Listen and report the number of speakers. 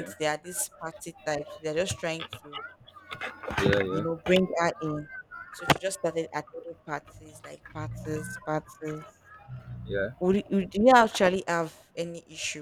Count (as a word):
two